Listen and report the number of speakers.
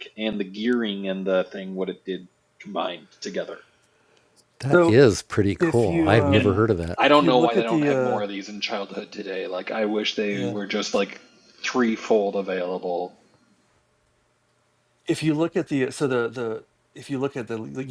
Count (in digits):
3